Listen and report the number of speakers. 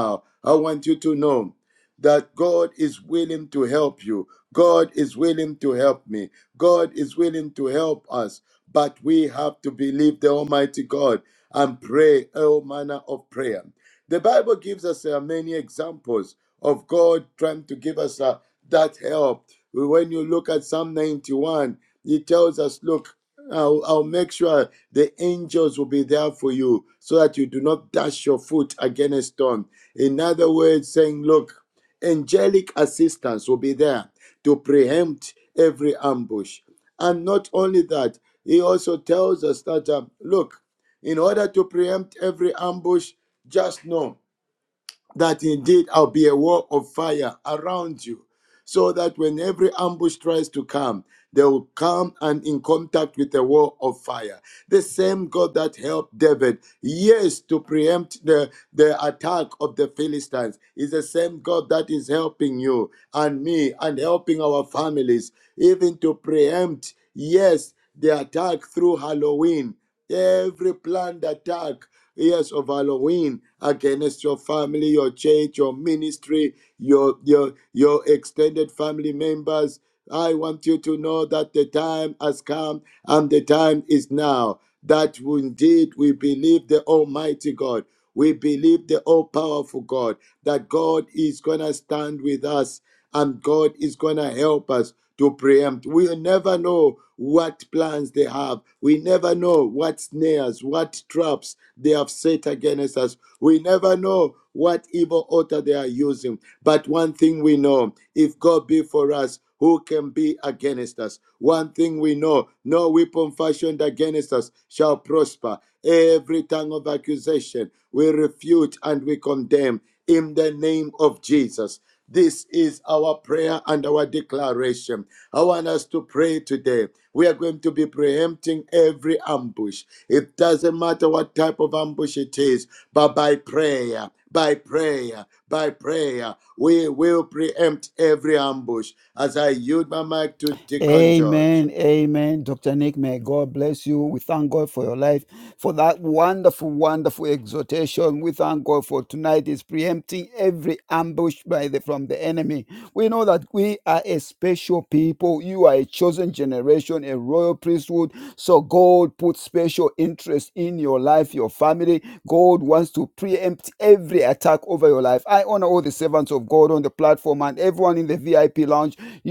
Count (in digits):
2